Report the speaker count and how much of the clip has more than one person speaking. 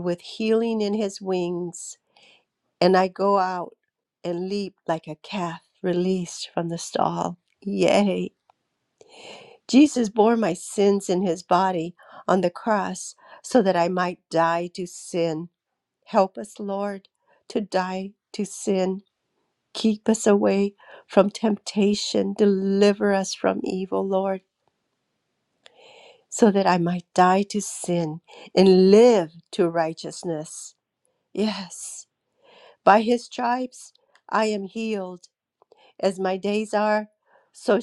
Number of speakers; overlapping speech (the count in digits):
1, no overlap